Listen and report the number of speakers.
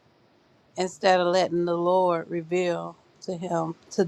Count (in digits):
1